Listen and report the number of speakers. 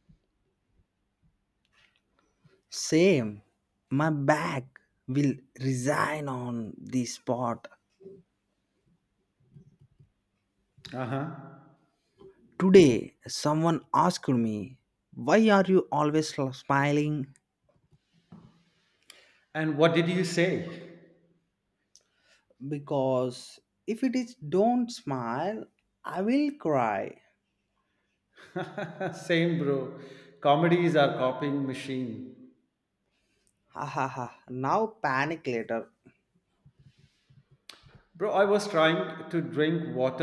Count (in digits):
2